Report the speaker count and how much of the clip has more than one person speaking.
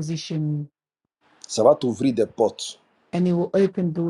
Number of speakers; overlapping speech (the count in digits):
2, no overlap